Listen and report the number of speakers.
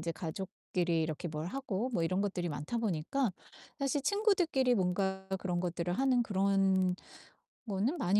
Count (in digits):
1